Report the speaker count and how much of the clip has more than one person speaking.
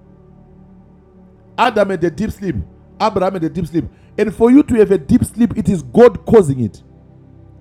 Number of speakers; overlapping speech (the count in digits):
1, no overlap